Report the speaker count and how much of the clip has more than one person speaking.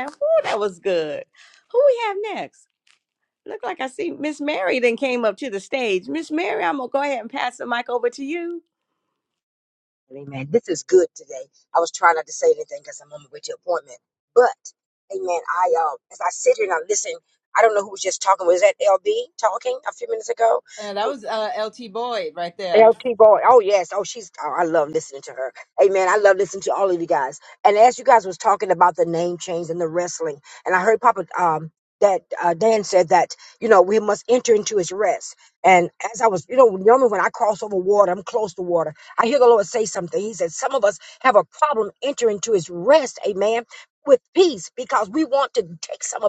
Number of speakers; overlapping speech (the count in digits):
3, under 1%